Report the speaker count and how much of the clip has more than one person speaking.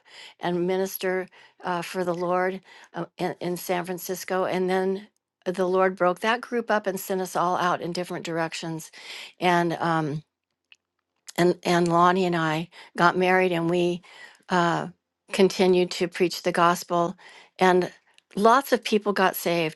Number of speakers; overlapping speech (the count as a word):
one, no overlap